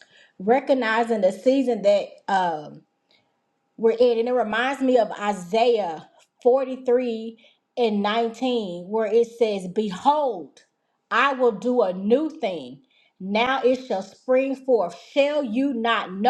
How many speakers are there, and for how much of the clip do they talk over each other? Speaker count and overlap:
1, no overlap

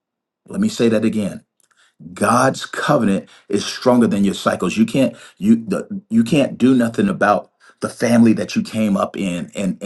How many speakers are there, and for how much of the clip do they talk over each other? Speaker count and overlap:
1, no overlap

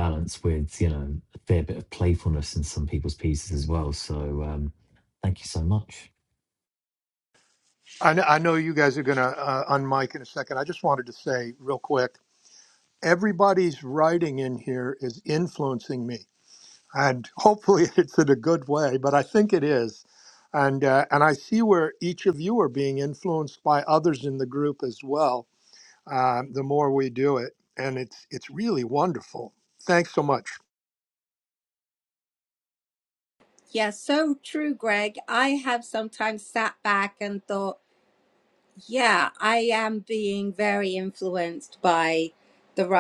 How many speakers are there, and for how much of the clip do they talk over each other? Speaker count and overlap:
3, no overlap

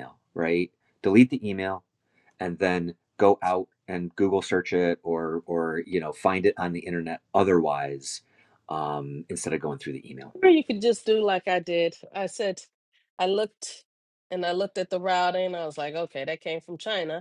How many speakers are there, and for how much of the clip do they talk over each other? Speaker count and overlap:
2, no overlap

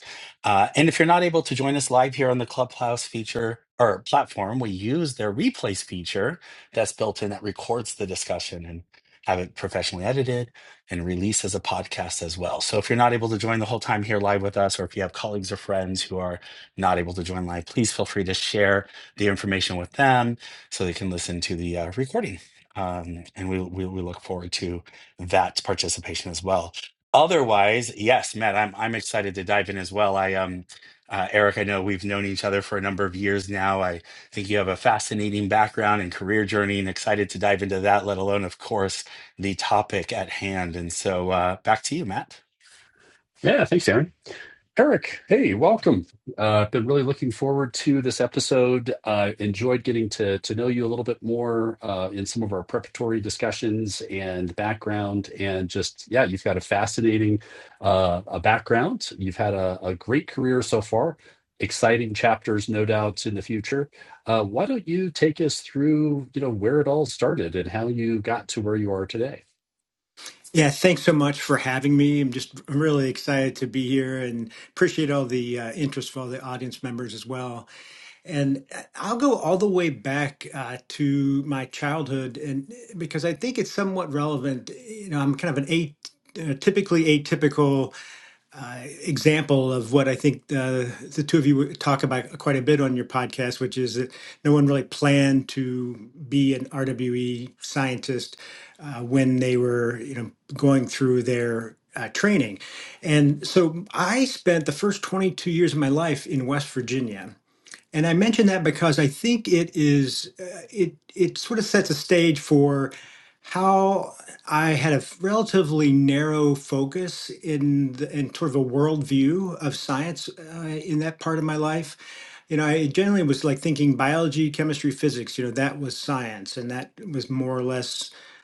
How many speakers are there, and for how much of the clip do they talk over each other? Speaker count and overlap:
3, no overlap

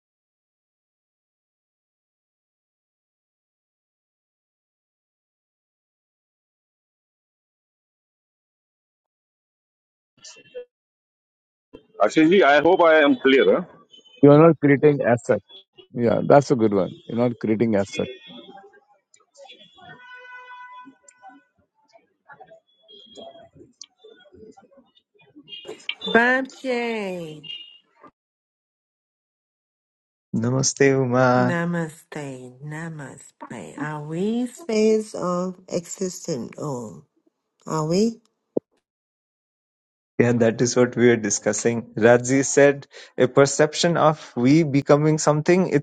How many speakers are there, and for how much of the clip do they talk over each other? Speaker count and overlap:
4, under 1%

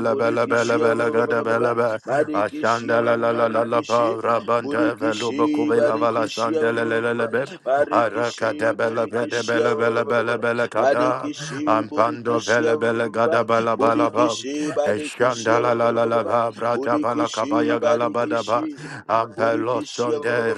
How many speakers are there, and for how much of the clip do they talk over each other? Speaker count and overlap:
2, about 62%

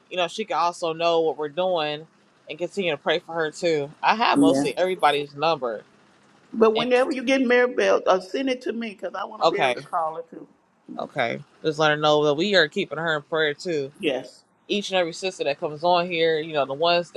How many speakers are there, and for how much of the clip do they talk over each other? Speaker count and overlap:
2, about 5%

